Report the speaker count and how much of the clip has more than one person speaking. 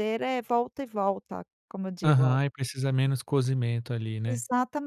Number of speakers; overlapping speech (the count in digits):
2, about 9%